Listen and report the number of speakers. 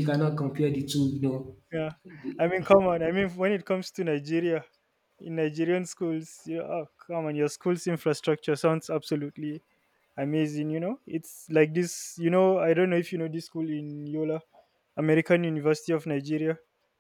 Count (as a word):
two